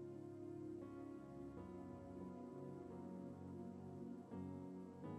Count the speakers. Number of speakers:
0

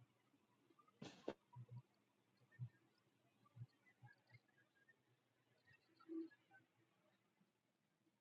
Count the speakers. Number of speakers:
0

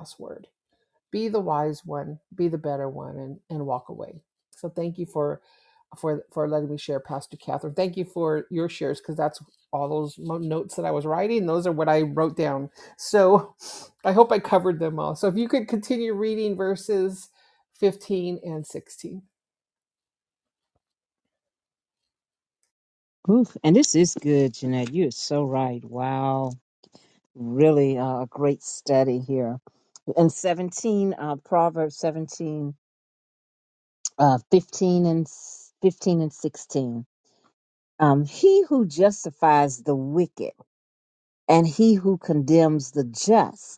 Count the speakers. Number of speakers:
2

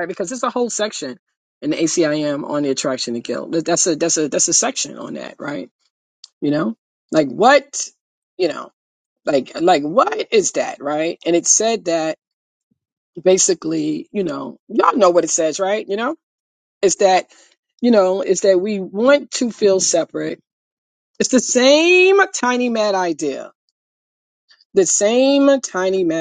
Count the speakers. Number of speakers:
1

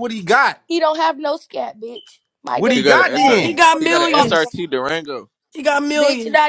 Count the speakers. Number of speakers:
4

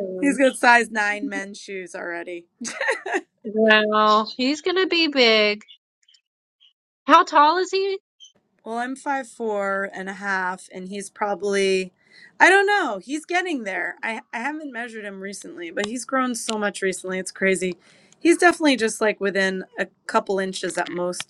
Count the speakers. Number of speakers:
2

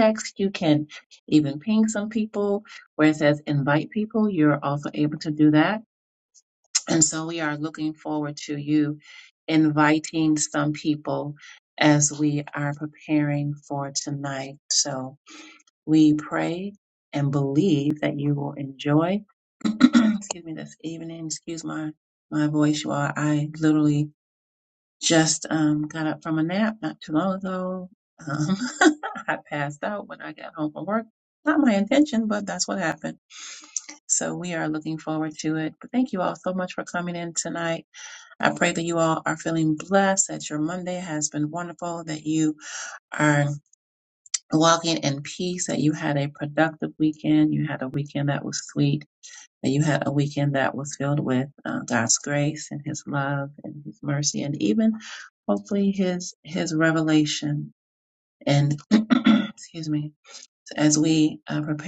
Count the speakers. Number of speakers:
1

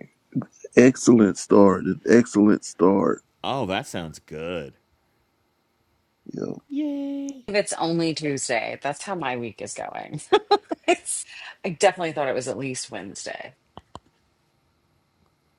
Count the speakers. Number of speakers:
3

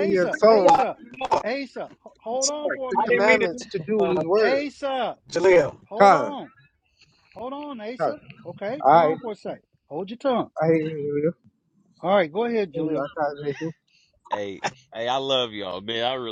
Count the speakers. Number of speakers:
4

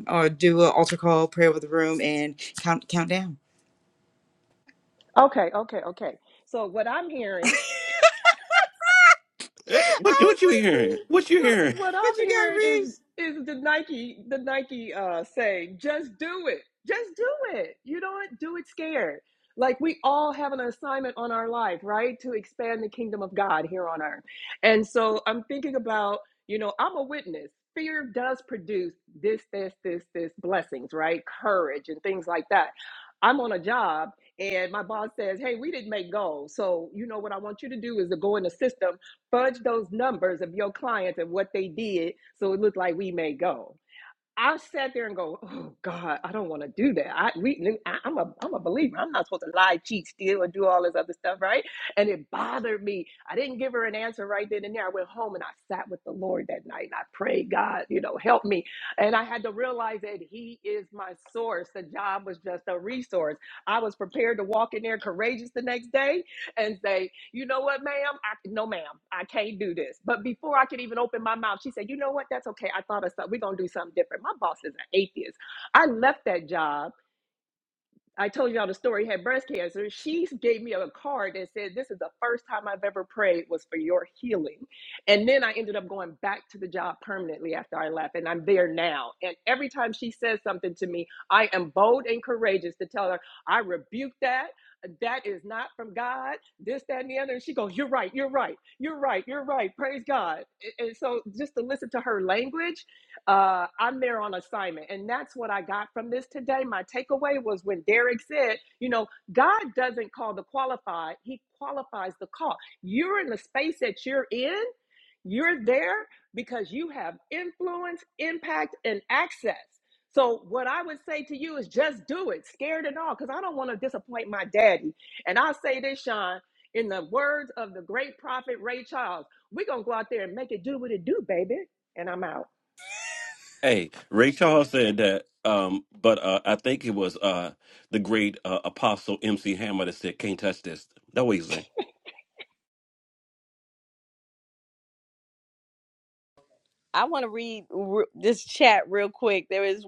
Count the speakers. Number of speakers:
4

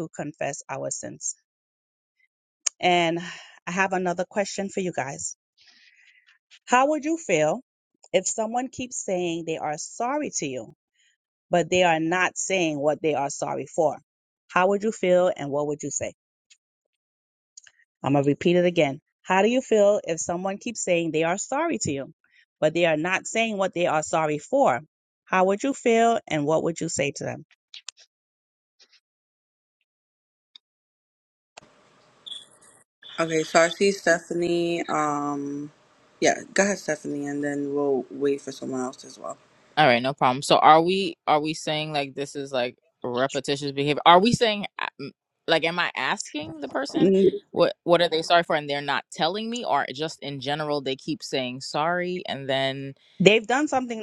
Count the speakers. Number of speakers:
3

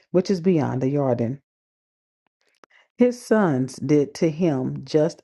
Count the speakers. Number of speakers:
1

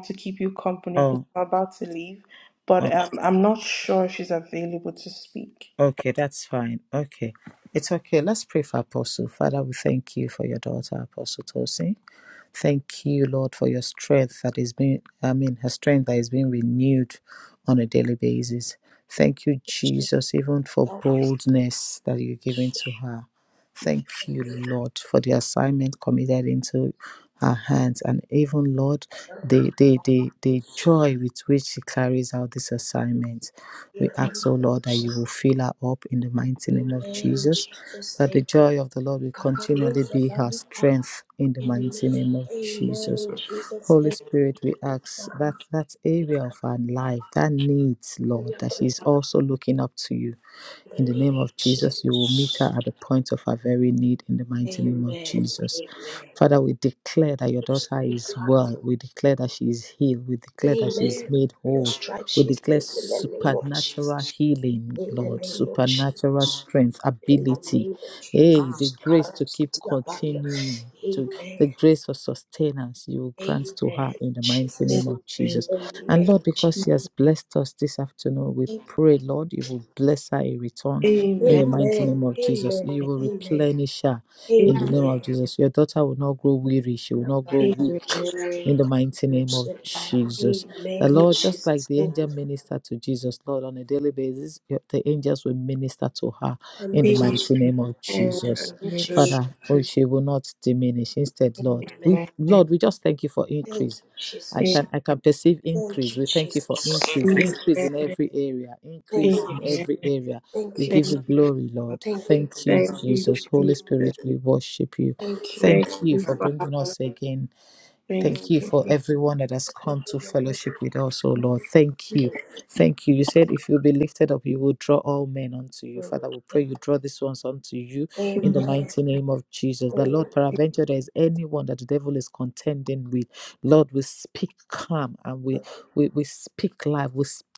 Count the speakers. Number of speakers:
3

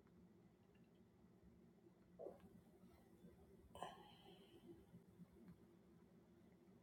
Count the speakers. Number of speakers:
0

